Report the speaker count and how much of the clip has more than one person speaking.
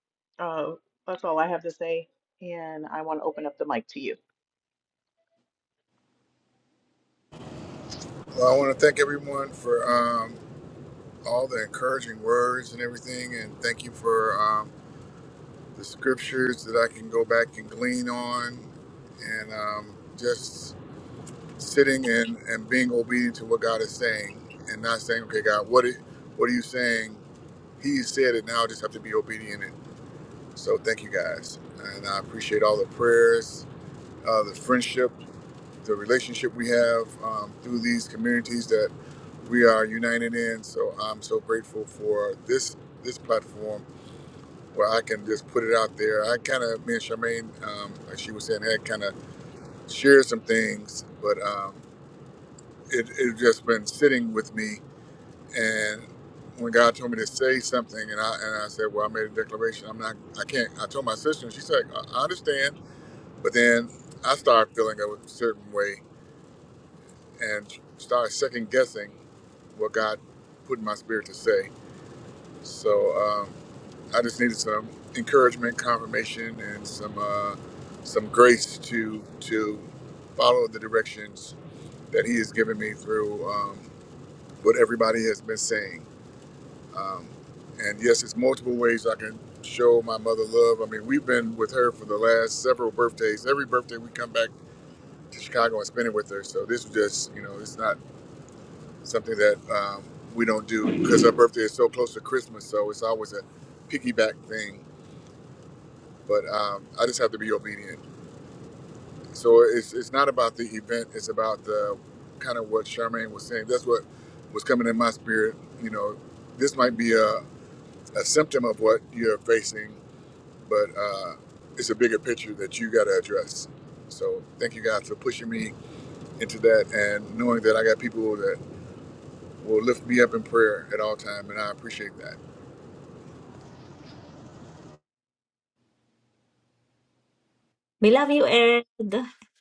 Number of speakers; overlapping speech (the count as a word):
three, no overlap